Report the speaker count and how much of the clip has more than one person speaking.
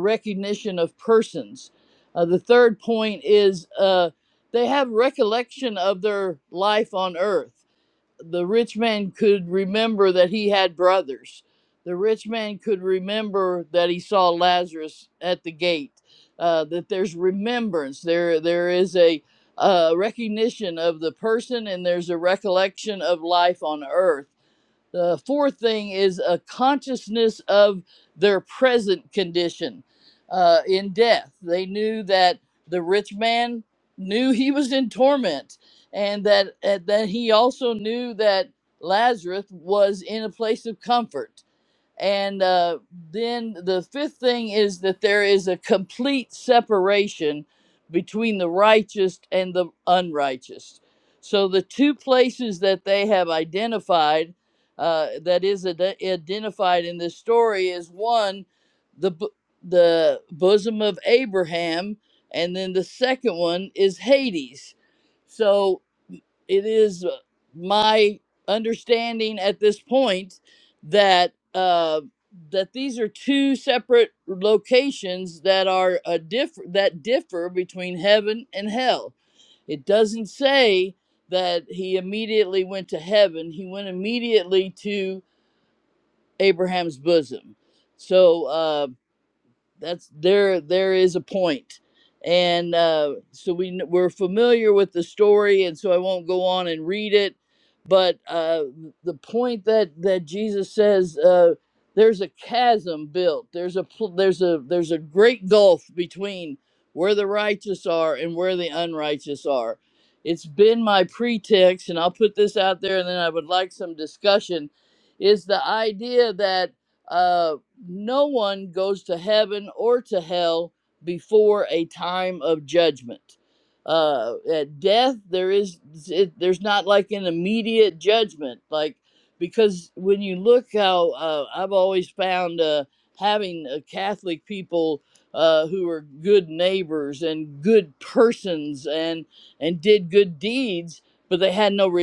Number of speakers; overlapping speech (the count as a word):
one, no overlap